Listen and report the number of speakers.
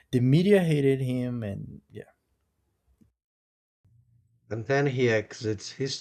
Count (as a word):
two